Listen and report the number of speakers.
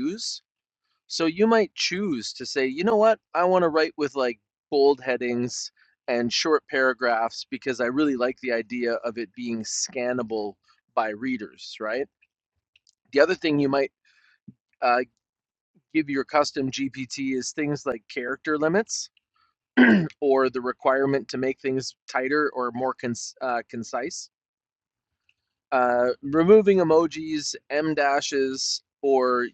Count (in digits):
1